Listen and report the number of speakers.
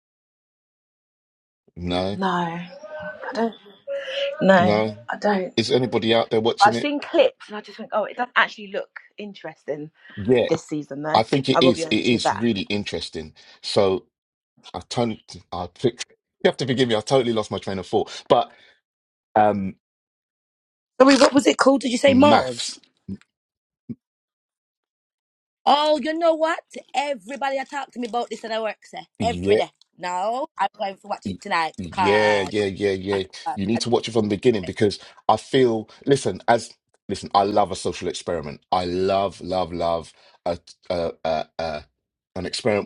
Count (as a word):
three